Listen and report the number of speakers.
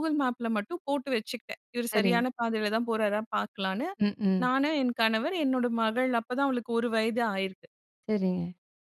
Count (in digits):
2